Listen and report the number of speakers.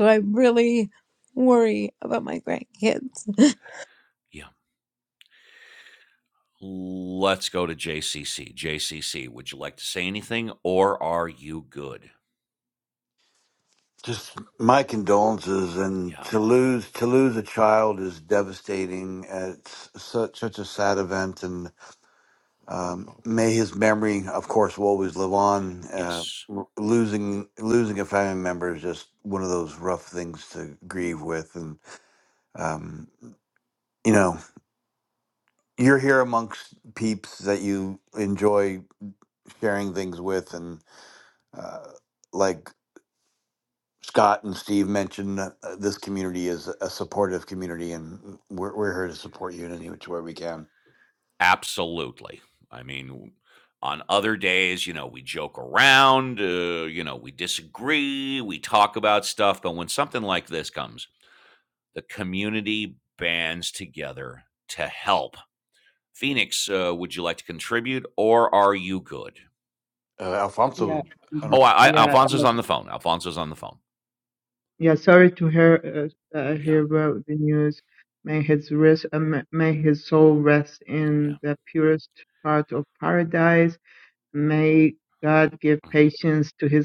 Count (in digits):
4